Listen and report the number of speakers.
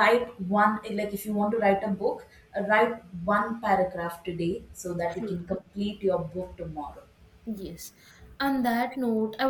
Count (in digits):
2